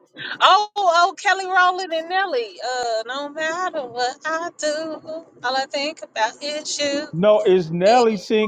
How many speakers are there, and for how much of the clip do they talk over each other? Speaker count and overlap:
2, no overlap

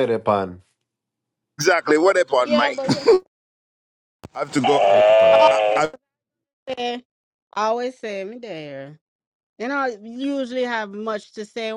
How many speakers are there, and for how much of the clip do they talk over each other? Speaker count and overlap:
3, about 4%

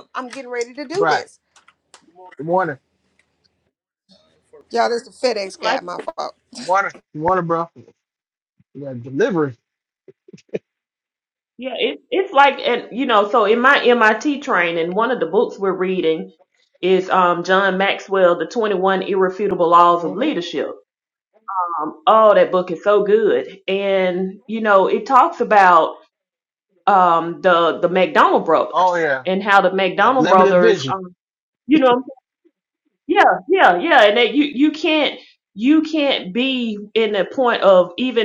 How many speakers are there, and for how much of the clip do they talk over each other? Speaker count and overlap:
3, about 5%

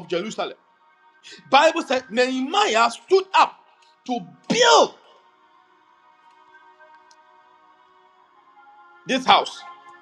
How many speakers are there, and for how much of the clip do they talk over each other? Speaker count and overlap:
1, no overlap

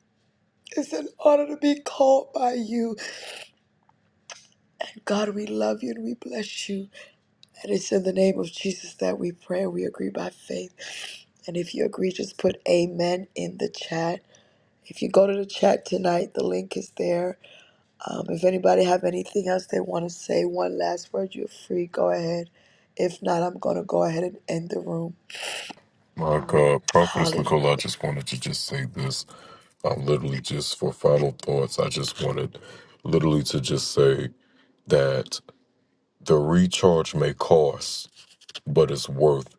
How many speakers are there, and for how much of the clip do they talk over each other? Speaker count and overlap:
2, about 2%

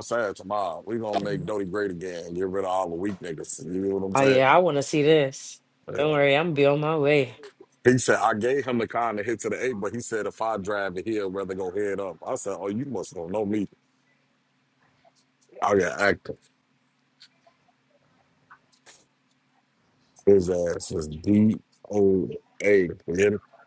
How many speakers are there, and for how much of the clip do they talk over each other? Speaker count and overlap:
2, about 2%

